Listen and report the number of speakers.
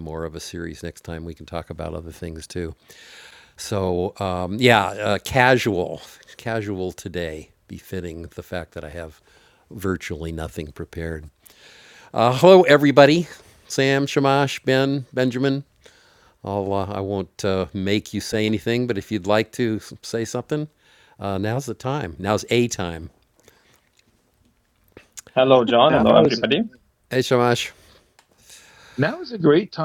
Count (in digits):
3